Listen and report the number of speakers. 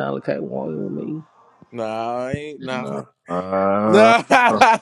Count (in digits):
3